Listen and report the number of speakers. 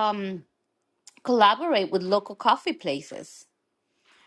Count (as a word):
one